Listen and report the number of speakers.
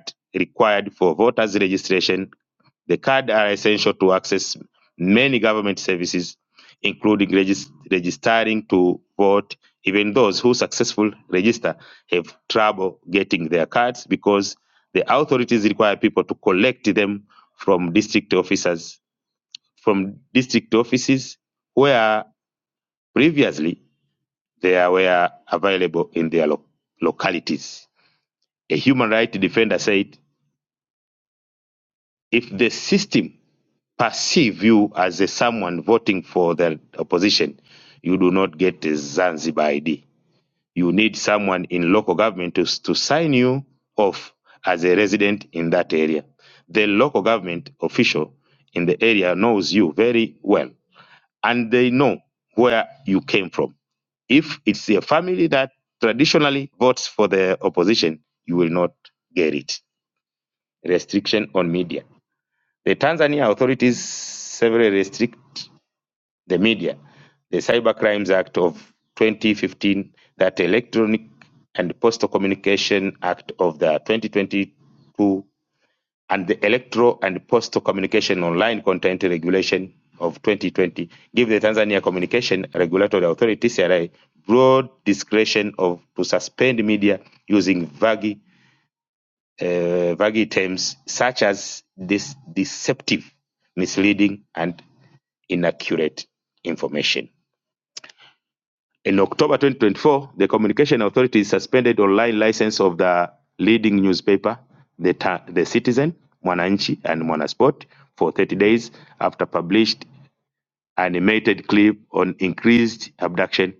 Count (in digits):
1